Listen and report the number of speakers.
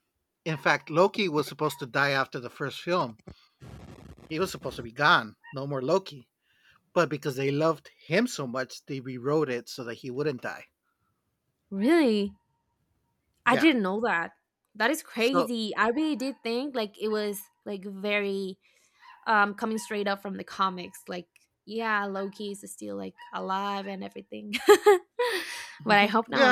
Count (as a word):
two